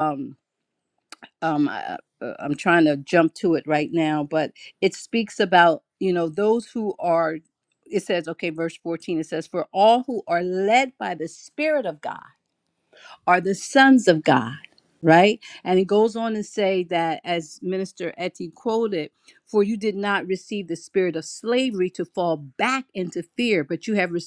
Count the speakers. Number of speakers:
1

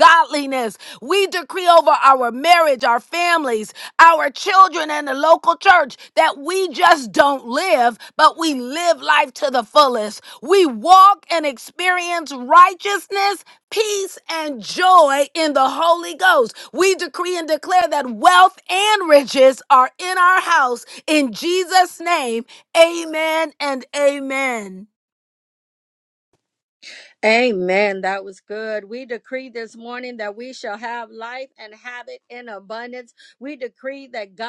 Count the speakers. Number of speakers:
2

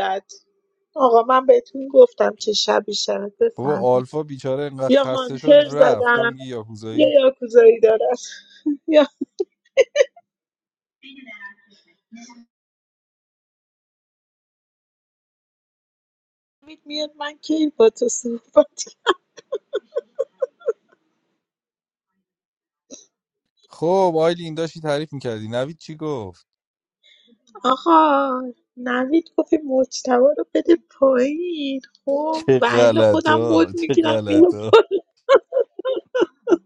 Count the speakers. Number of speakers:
2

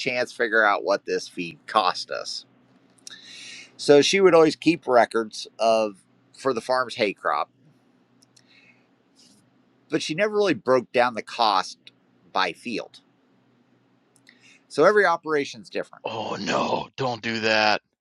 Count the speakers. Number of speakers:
2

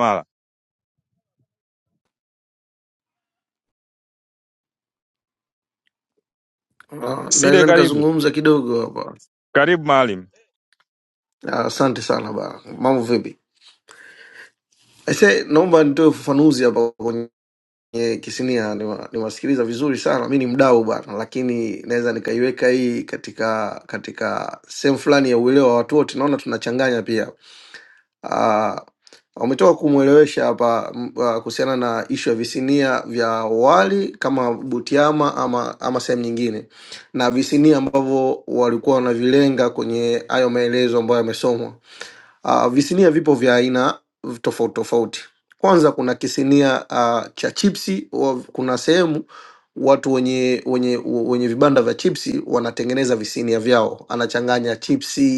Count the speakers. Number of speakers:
2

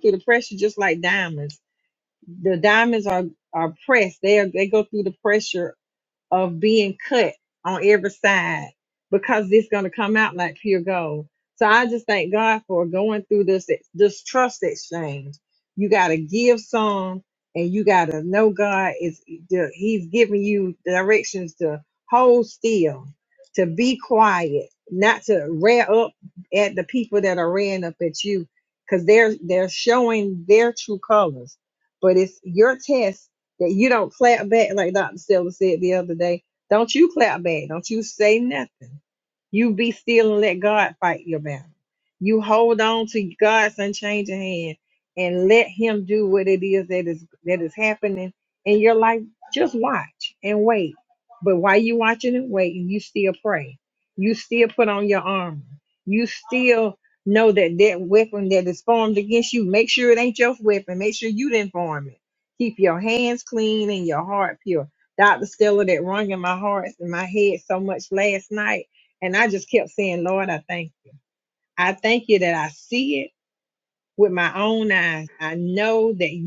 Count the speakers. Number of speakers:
1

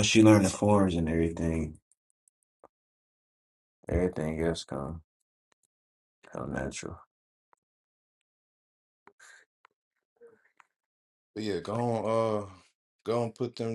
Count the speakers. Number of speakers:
2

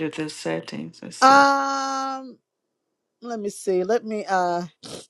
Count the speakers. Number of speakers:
2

